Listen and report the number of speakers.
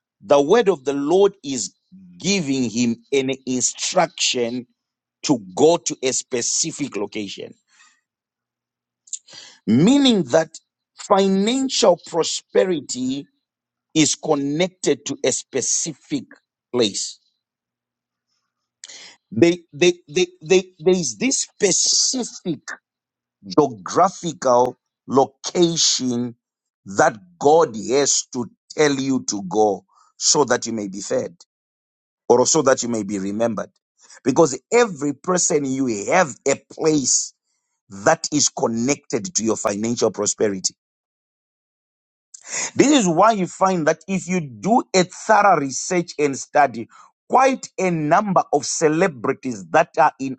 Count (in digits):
1